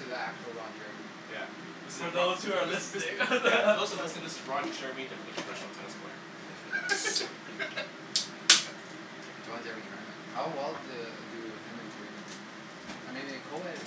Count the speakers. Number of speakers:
3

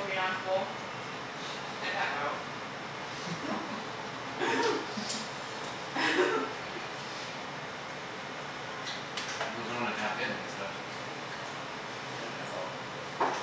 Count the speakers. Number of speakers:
2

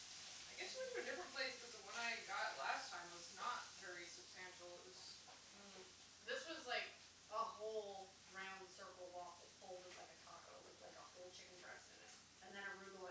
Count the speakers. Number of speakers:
2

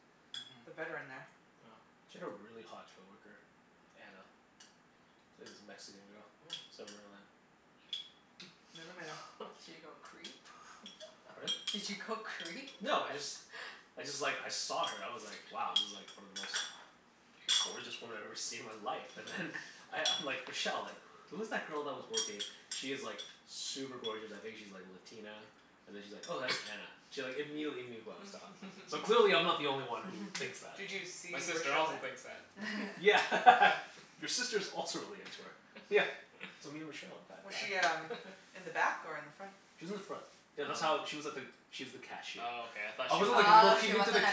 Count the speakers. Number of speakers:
4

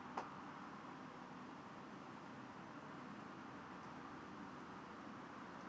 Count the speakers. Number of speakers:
0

